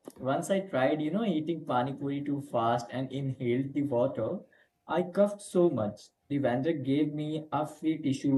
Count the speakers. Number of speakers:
1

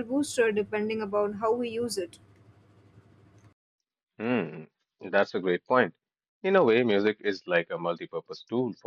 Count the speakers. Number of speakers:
2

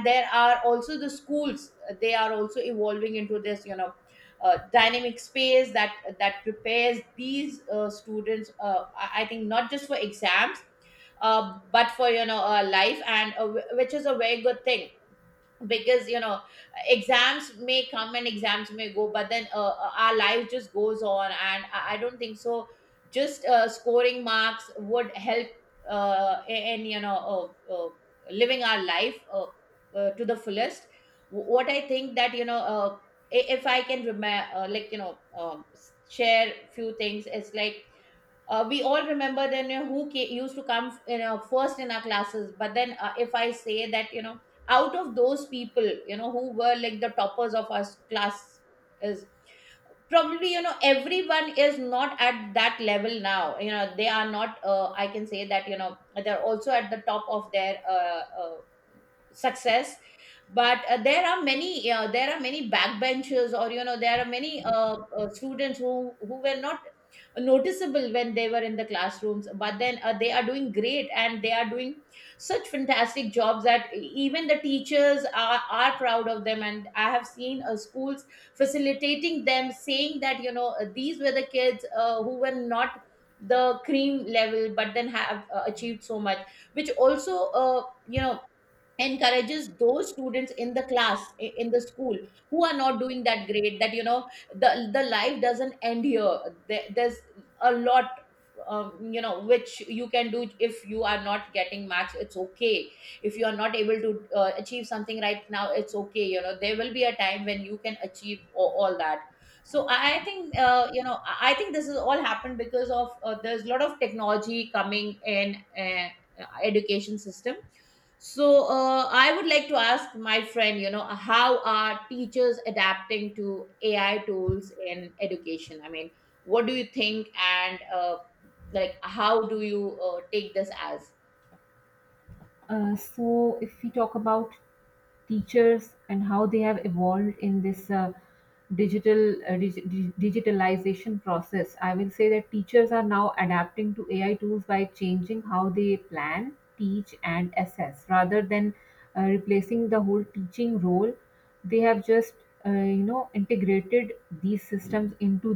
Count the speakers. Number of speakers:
2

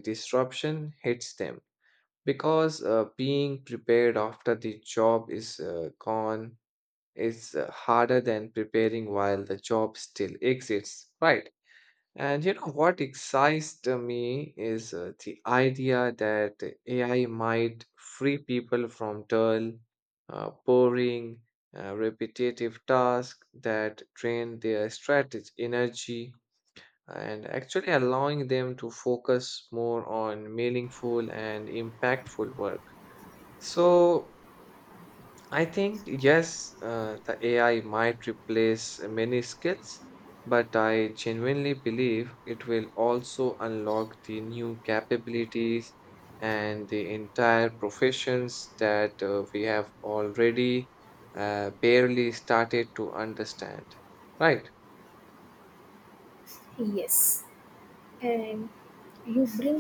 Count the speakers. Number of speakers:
2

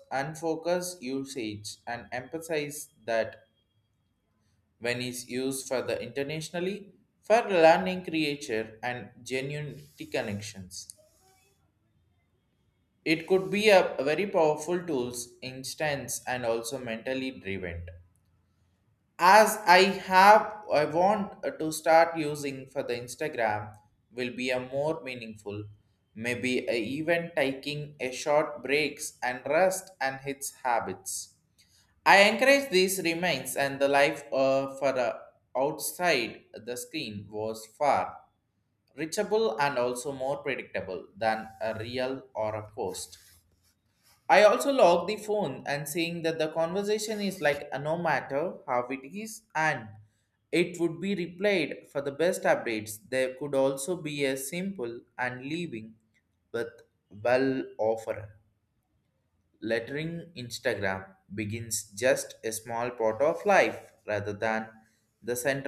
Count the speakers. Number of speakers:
1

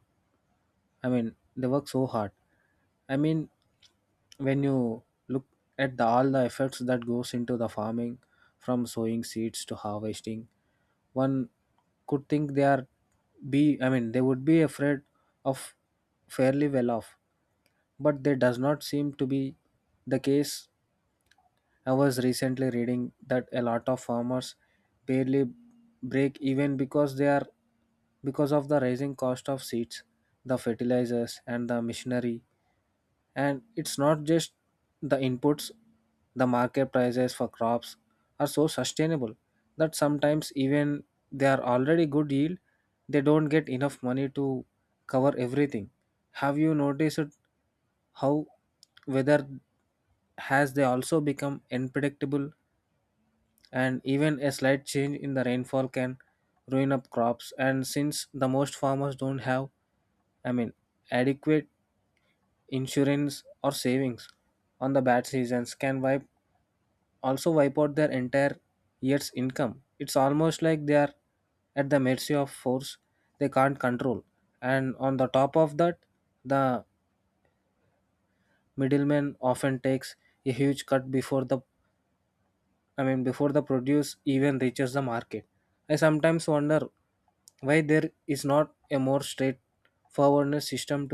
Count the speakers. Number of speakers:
1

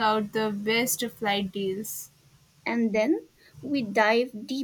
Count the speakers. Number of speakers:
2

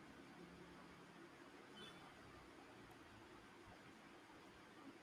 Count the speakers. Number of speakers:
0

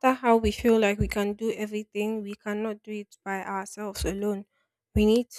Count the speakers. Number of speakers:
1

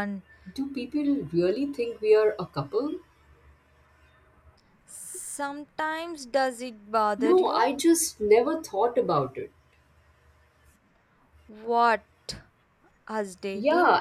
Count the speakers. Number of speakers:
2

